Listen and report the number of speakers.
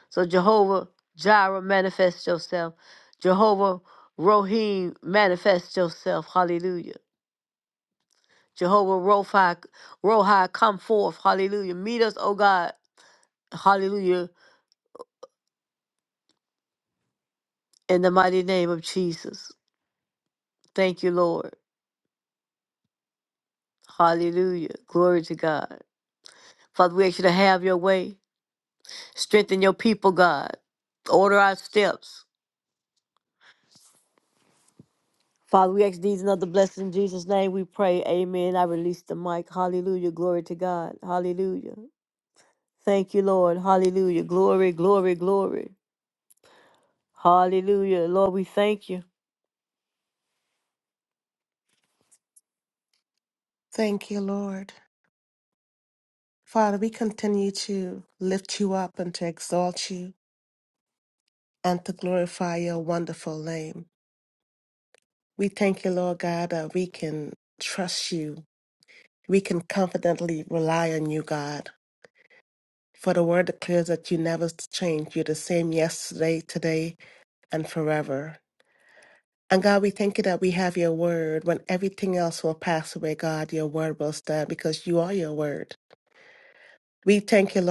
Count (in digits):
2